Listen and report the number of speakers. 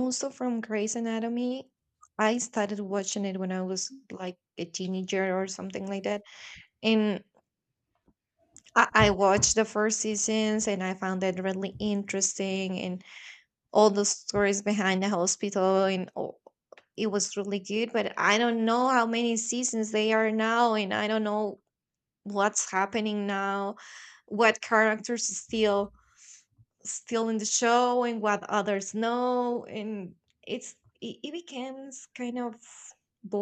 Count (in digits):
1